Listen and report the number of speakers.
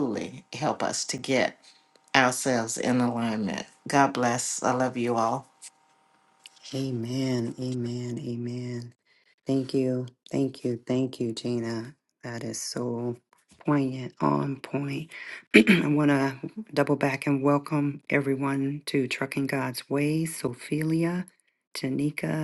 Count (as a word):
two